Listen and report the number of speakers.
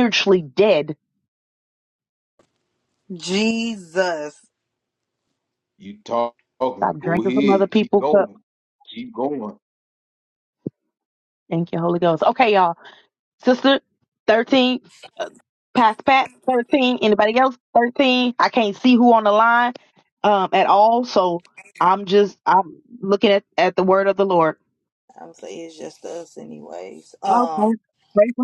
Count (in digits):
3